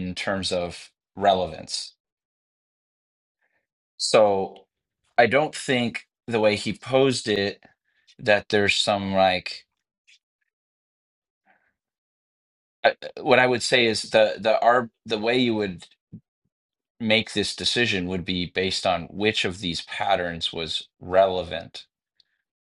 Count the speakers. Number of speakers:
one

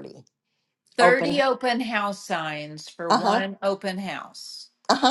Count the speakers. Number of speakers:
two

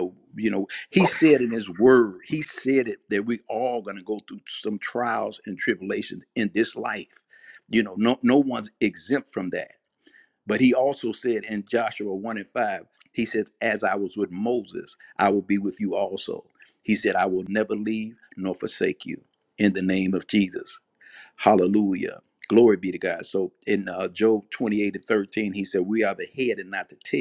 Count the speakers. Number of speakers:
one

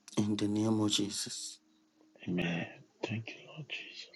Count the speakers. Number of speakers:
two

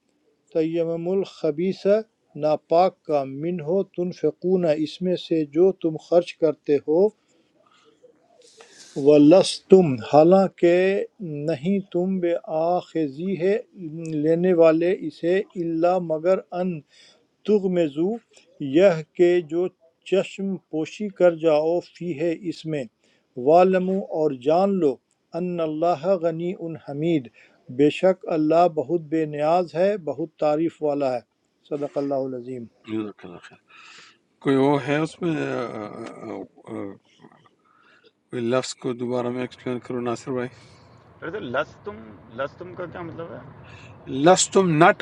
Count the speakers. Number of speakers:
three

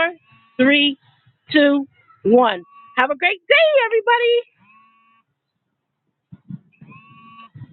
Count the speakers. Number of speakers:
one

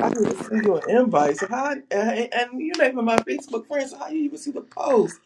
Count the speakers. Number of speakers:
one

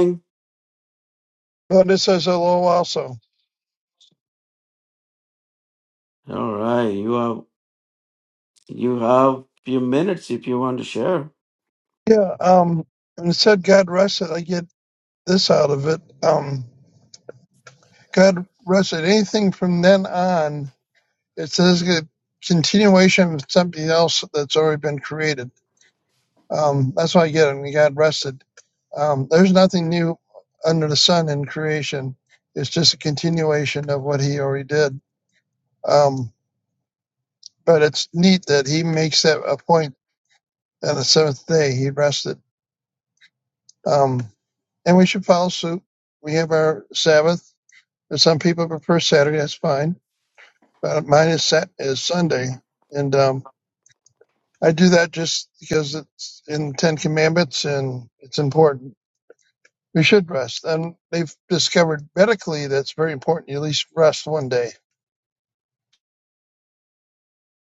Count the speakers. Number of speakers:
two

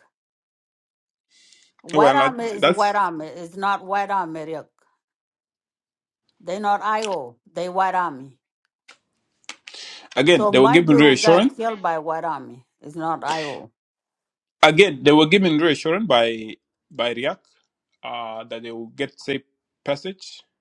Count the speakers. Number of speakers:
two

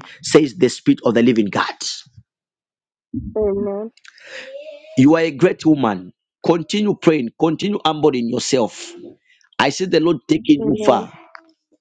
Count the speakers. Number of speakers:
two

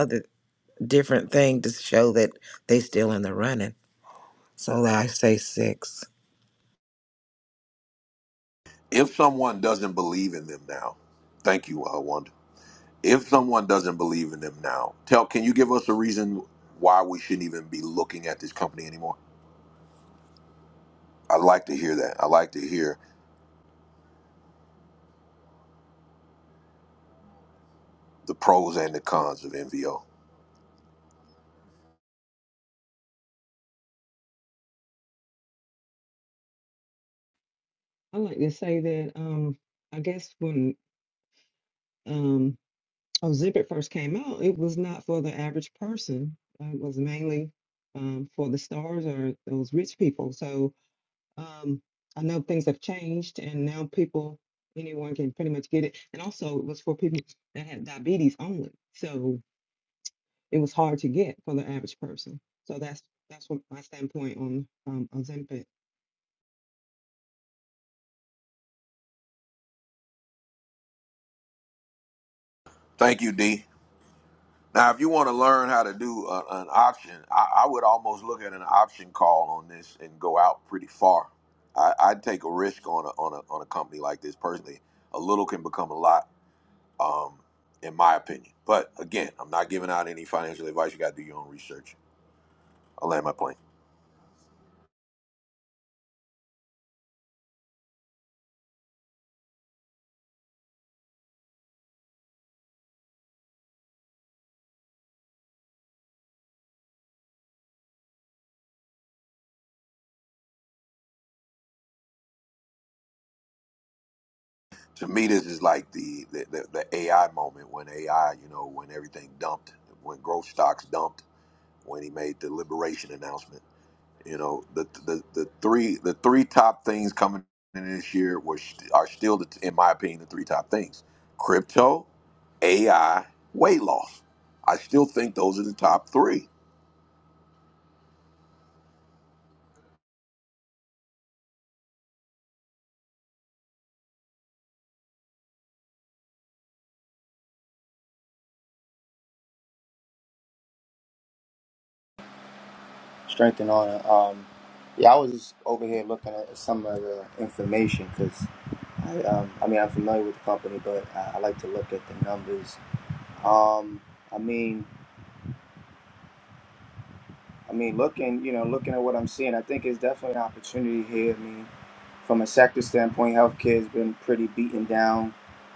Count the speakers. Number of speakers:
four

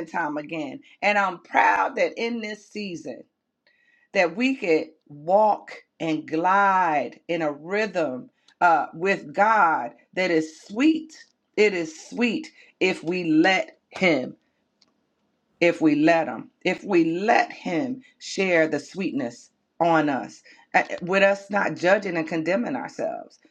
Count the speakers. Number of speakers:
one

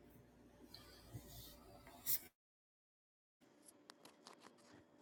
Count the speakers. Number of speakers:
zero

